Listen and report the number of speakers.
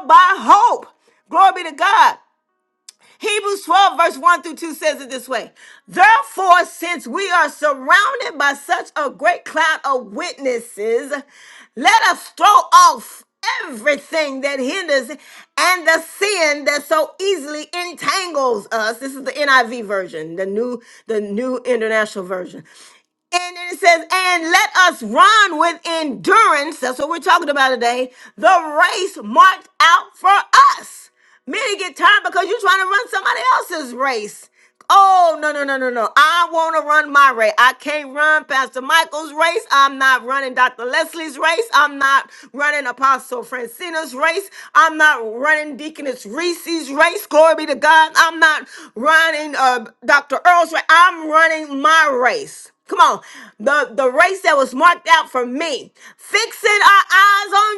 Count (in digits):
1